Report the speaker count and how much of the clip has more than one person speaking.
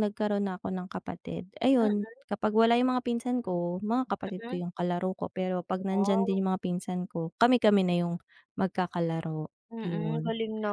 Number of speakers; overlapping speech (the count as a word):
two, about 15%